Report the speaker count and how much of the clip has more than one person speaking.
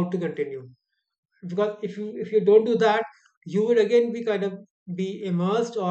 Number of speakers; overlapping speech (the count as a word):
one, no overlap